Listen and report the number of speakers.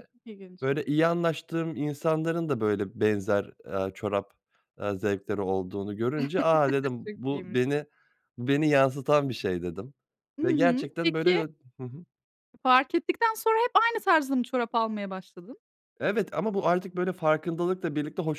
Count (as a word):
two